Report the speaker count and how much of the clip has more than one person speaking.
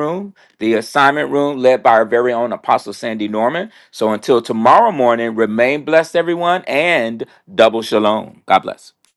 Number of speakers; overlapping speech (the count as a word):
one, no overlap